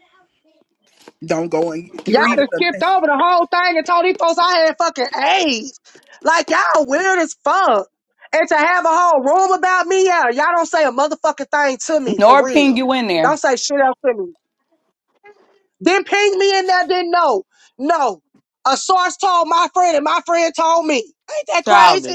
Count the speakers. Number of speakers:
3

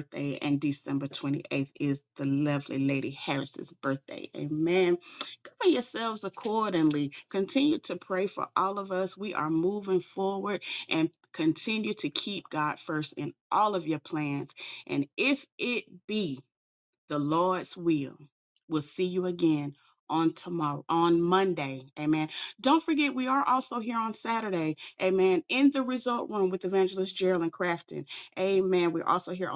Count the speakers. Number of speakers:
1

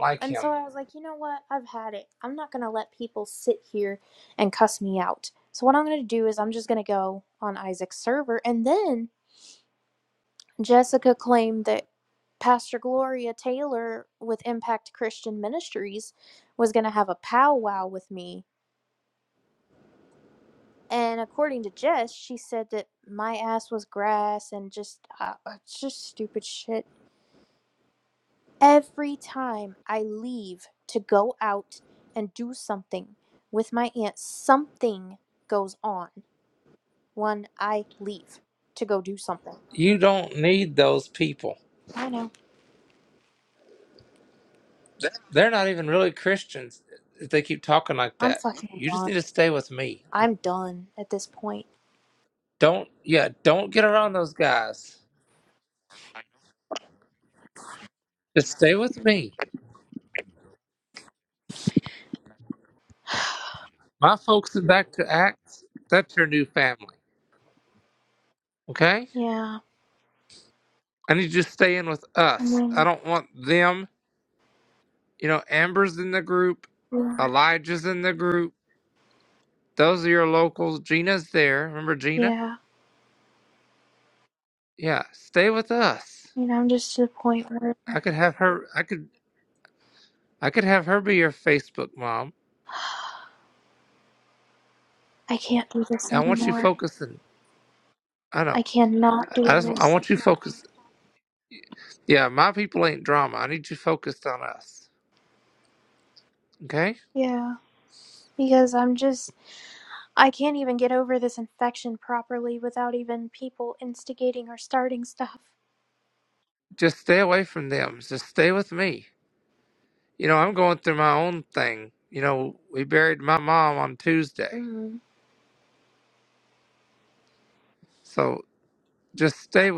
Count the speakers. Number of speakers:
2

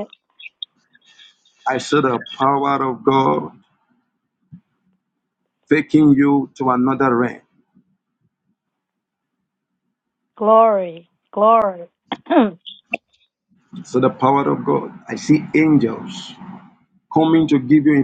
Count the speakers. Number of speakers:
2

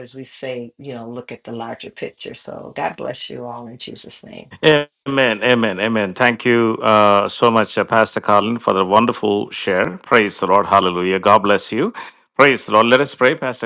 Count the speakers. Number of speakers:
2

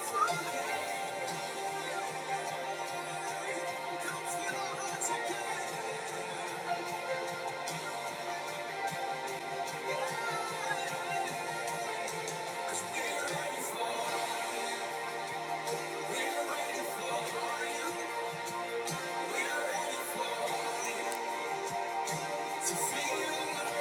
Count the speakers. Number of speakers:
0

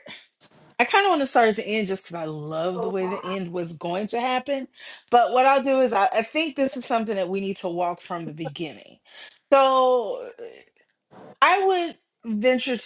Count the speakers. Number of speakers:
1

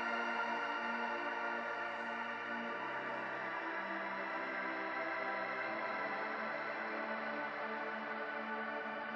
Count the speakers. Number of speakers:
0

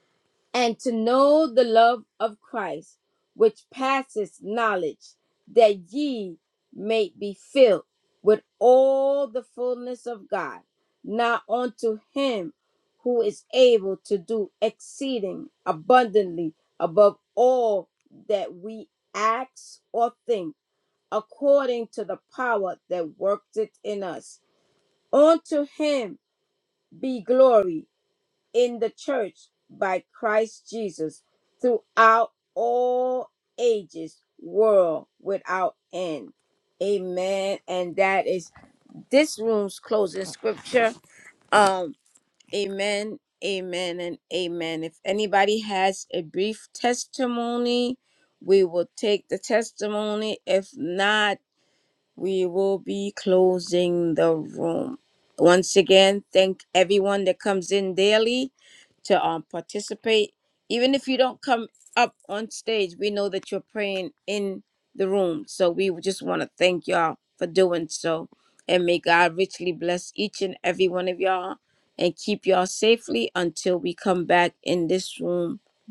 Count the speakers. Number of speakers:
1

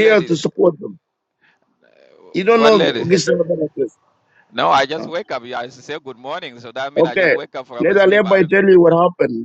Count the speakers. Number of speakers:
2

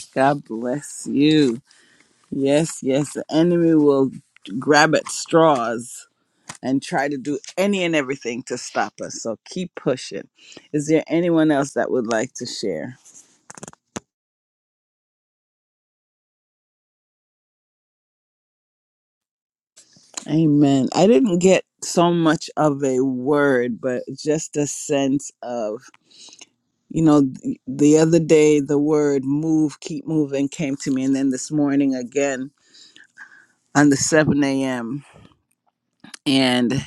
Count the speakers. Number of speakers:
1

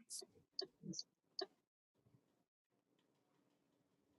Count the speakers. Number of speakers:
0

